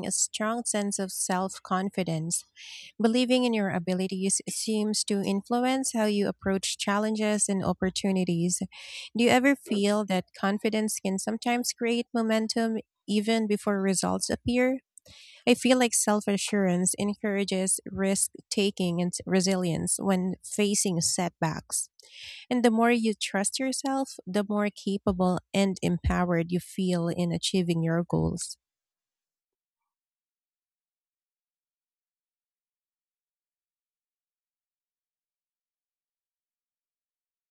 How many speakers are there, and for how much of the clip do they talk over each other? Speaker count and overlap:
1, no overlap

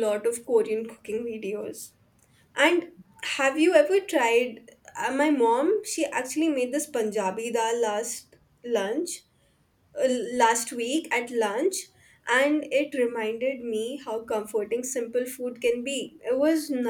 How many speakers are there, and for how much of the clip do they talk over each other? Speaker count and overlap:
1, no overlap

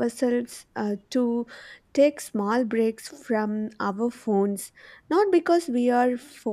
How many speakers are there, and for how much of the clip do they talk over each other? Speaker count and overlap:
1, no overlap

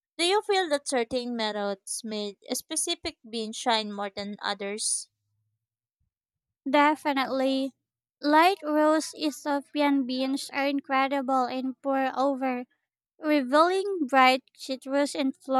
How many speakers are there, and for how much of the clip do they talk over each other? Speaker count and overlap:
2, no overlap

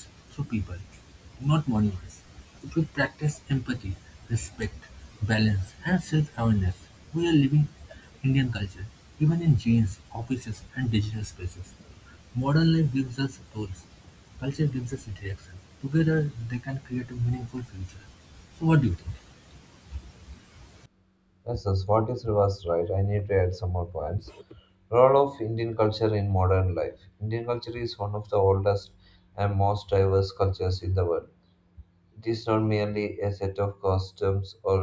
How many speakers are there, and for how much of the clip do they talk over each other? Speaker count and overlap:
2, no overlap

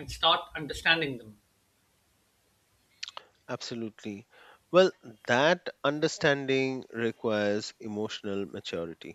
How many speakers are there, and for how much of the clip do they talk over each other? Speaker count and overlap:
2, no overlap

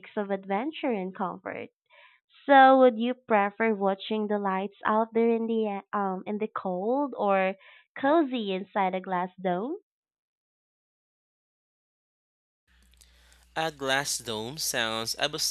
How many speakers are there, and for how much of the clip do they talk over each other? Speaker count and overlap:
2, no overlap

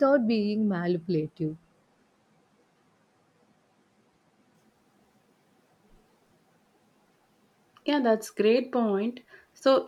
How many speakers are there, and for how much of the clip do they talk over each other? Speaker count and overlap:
2, no overlap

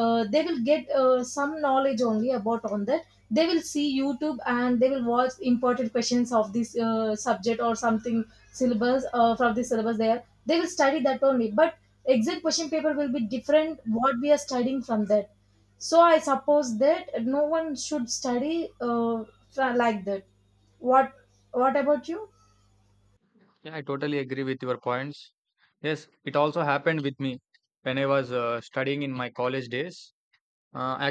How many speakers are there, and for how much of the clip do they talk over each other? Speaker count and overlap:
2, no overlap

